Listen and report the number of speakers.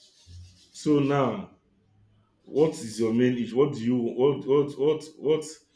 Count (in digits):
1